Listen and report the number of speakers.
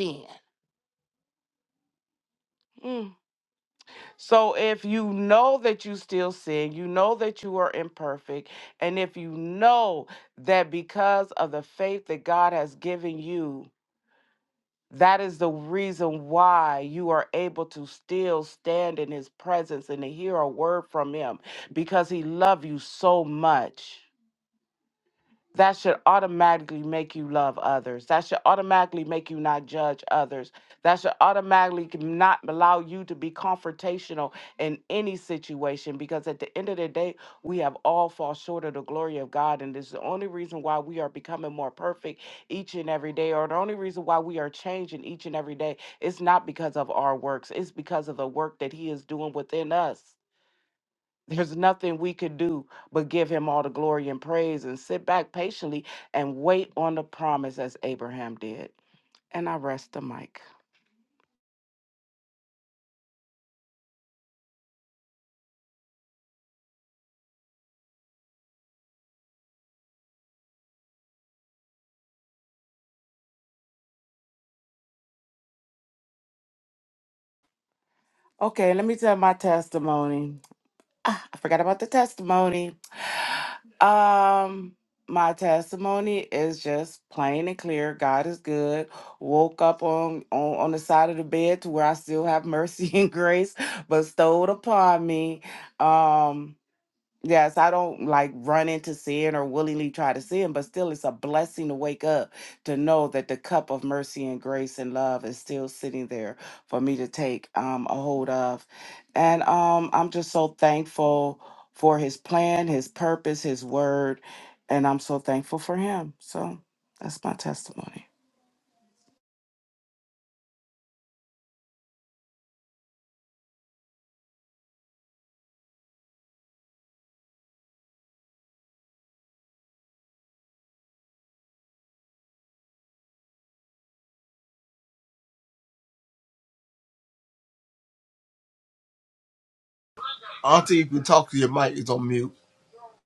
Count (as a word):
two